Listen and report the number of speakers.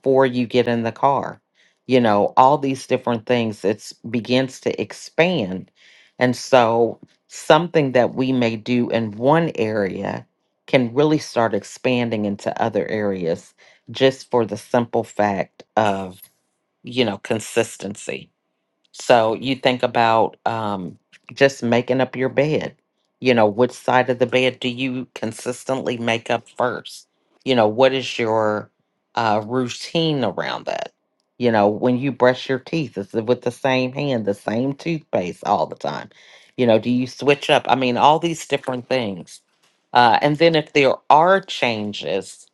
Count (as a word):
one